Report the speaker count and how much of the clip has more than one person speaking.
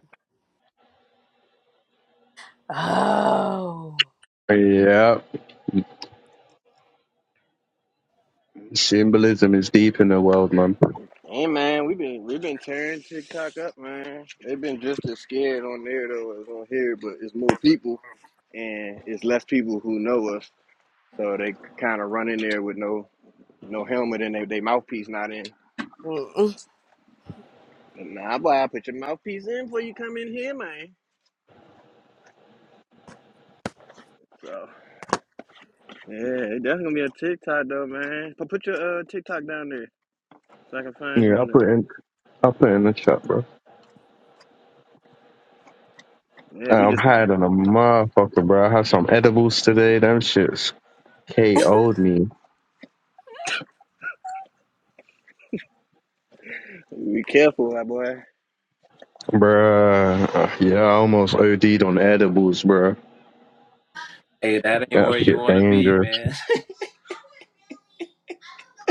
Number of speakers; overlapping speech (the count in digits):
4, about 3%